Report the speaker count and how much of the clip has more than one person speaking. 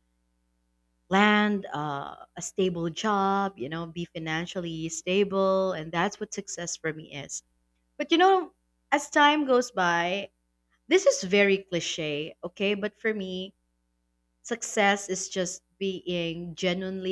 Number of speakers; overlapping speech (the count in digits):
1, no overlap